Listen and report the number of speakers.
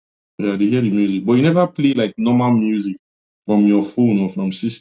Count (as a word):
one